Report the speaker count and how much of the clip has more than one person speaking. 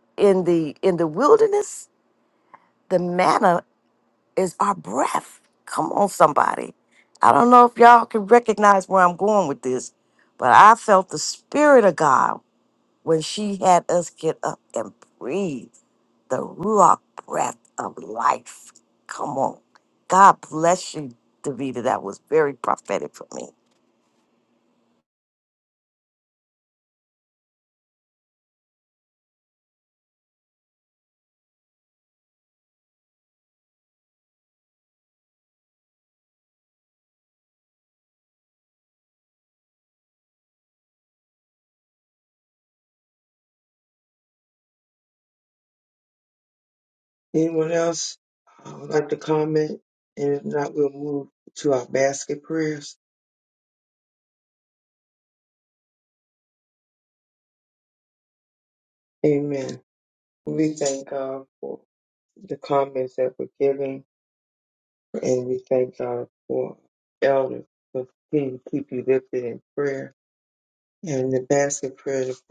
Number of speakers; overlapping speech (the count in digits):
2, no overlap